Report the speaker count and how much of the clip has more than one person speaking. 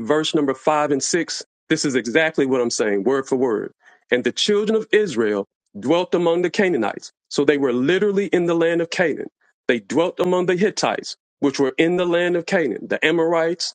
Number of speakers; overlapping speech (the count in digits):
1, no overlap